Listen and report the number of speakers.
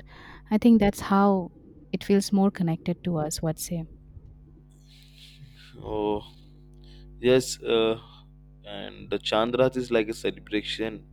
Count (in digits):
2